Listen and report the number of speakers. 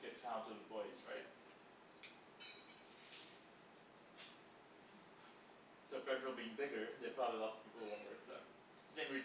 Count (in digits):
1